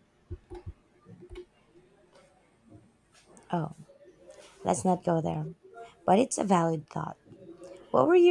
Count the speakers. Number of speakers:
one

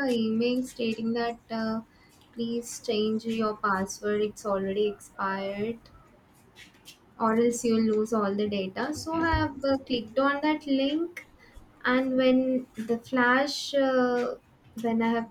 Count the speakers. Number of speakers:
one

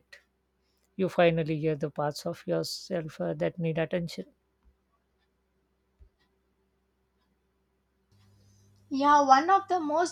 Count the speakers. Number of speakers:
two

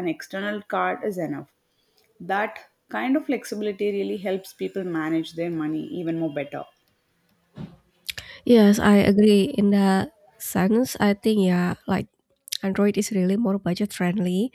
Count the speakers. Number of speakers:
two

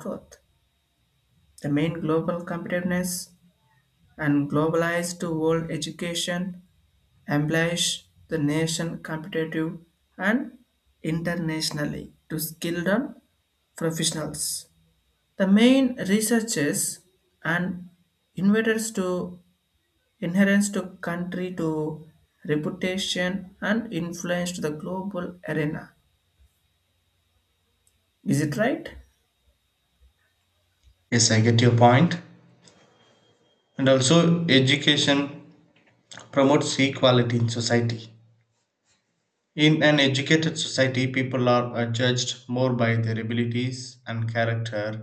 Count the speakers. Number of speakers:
two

